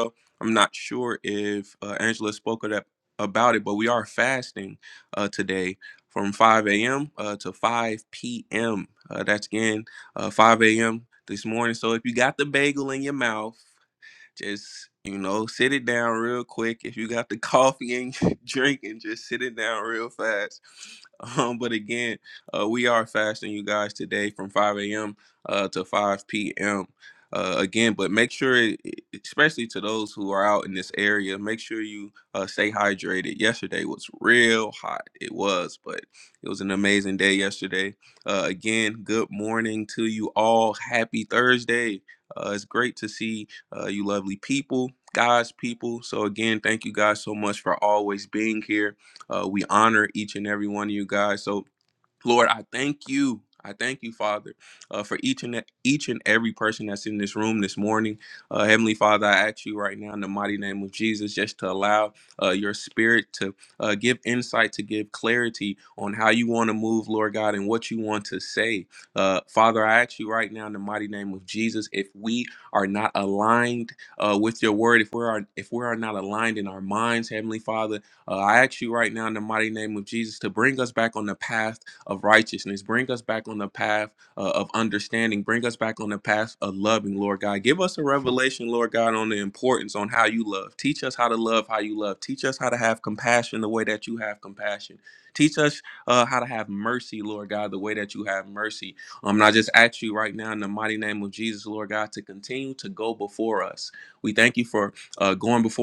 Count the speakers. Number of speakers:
one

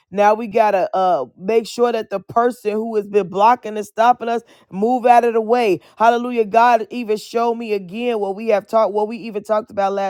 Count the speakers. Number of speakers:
one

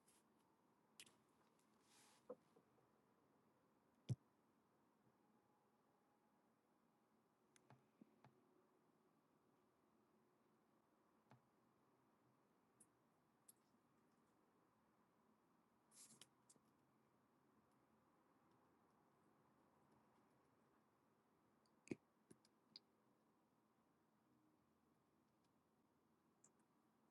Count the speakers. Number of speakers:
zero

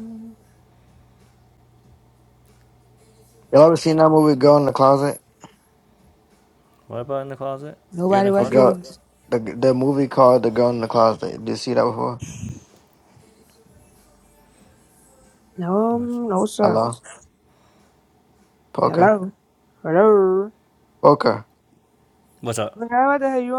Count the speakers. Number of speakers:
three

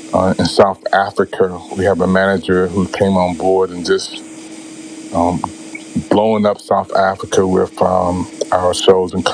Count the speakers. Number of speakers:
one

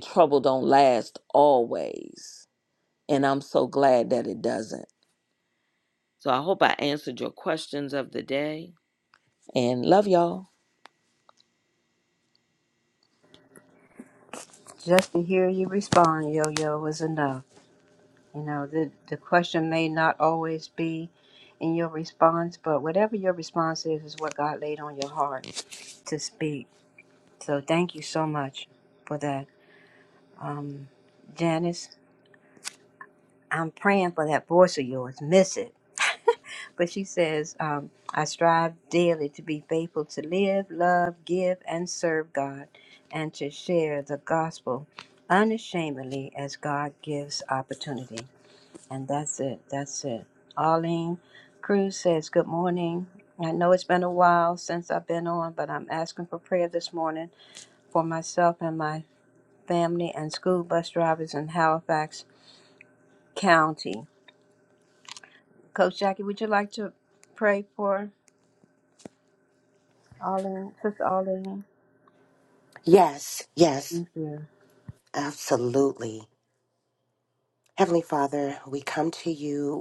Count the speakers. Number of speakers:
three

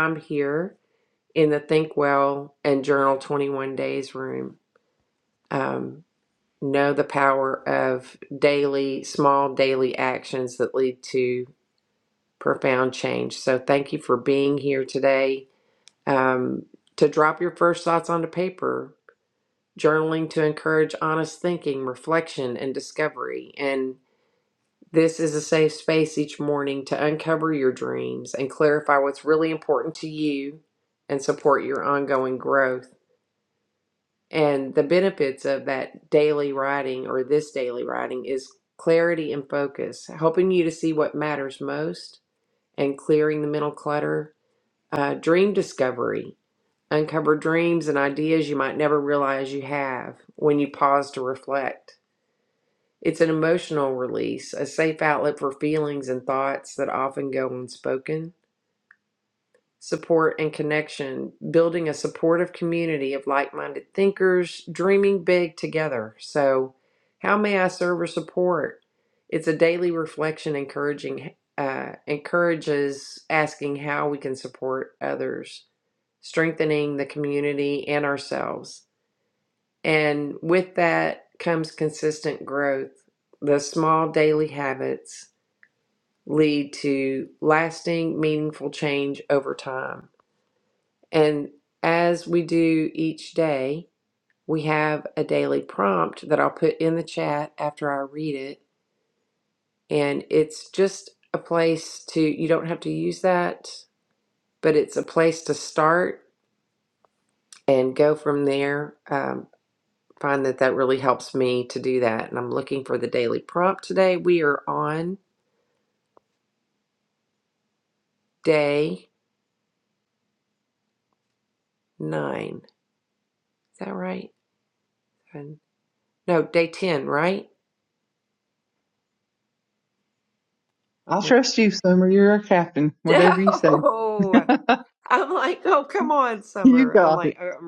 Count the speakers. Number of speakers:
two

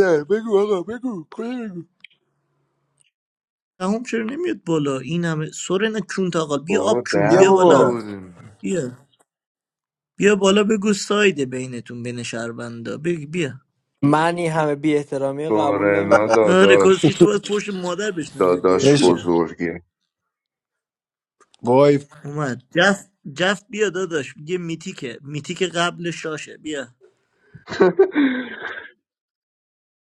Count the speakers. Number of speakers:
four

